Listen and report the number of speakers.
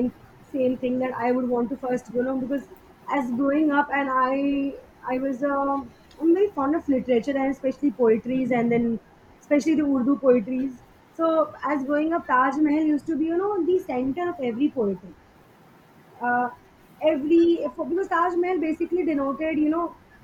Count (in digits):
1